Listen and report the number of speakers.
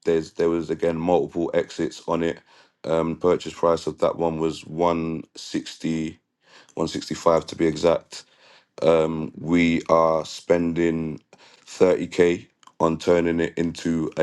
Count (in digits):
1